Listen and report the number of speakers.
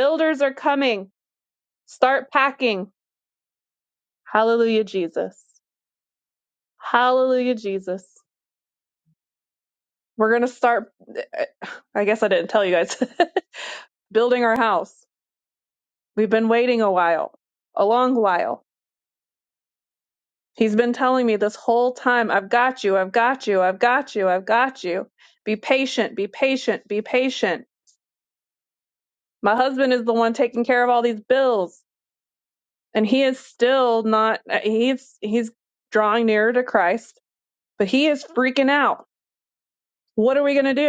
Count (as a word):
one